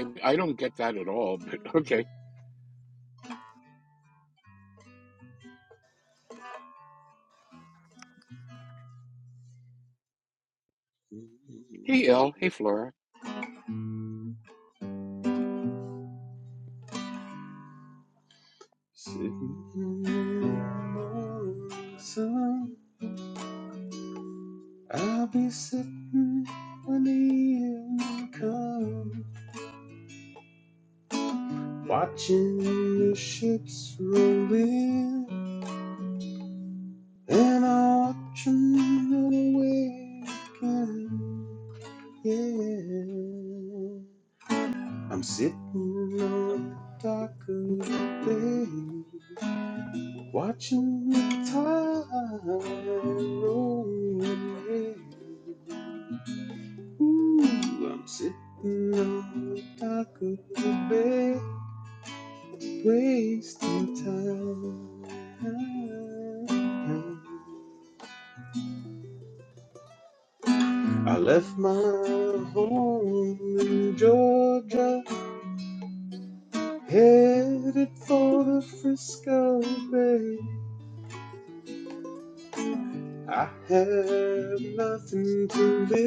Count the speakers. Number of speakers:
2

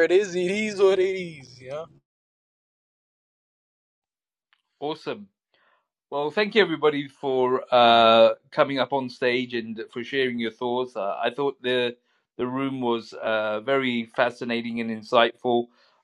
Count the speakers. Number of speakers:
2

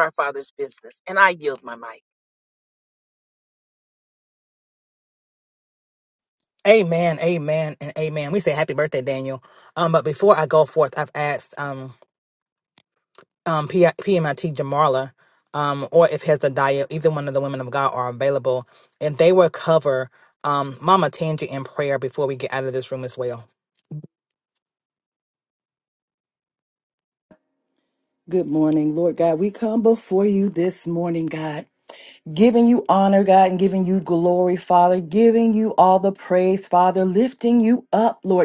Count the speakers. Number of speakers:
3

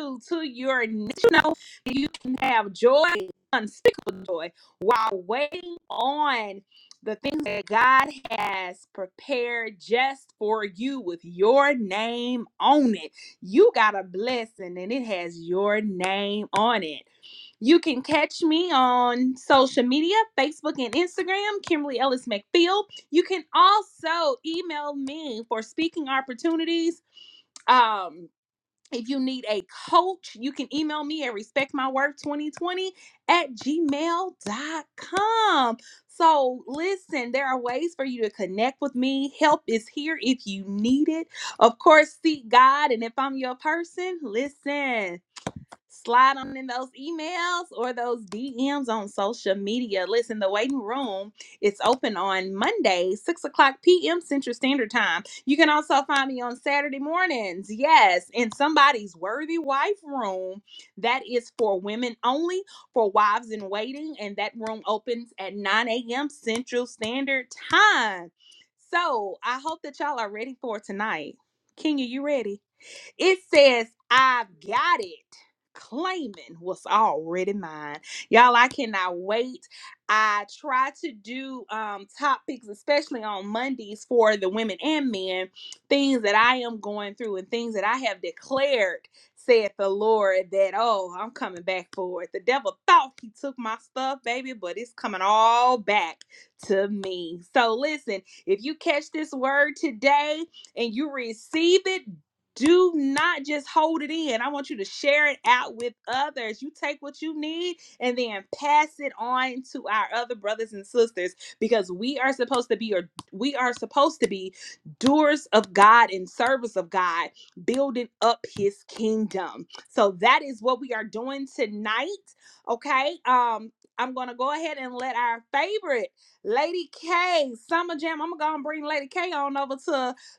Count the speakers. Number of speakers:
1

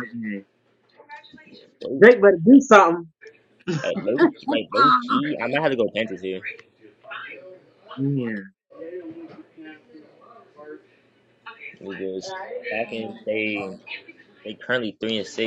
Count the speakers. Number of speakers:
2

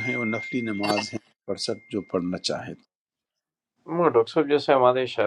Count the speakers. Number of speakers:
2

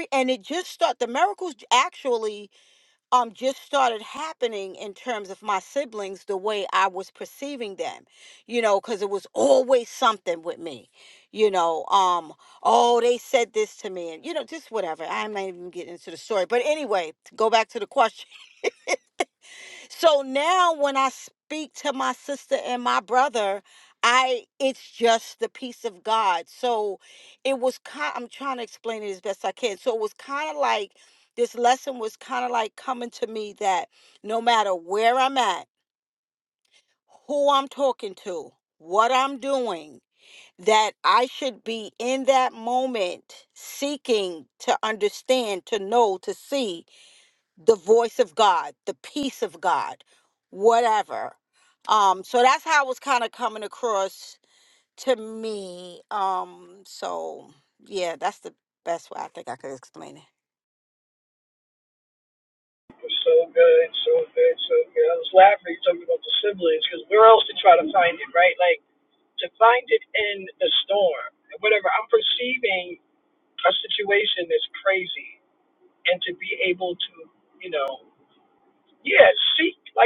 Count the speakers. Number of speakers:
2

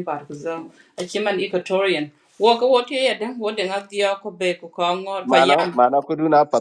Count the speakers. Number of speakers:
2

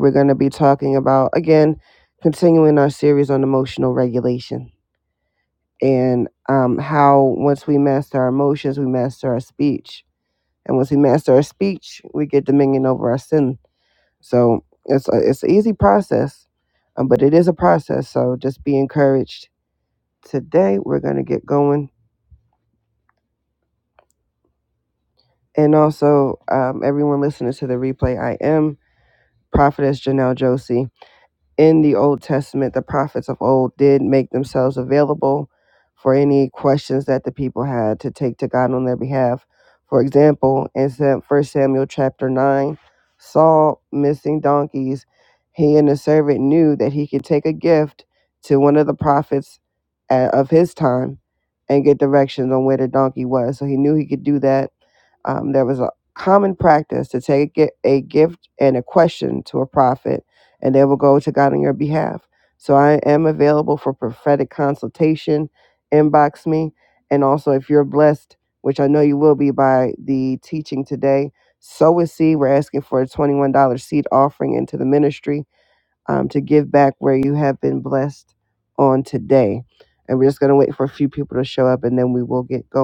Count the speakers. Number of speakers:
1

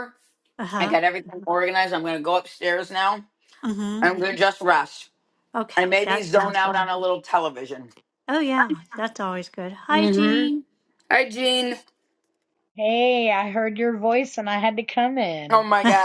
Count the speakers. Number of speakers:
3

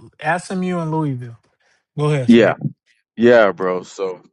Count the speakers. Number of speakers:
2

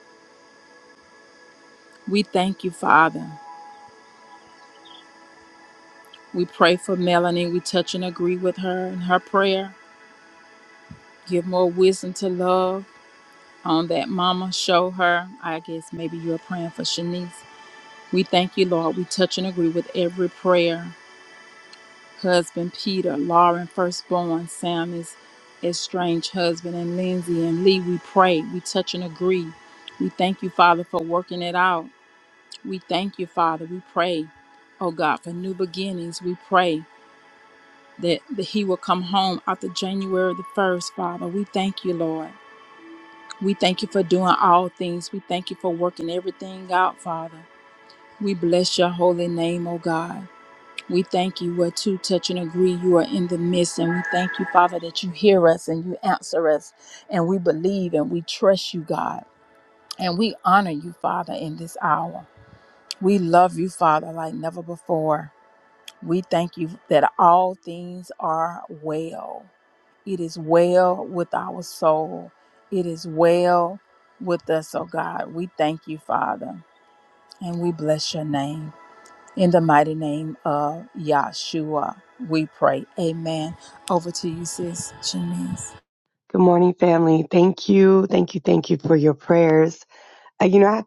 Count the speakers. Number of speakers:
2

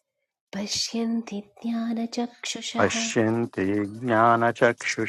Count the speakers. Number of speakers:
2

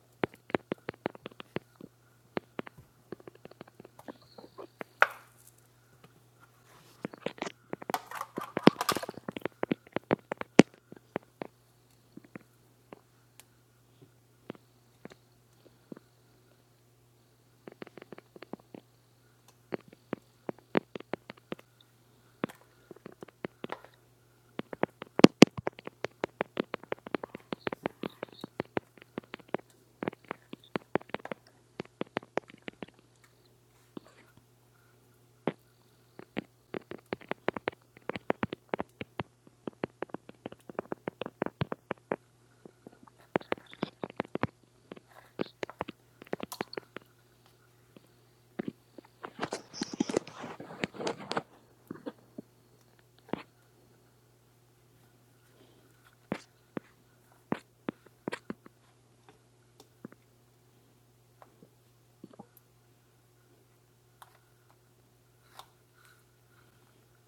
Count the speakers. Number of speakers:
0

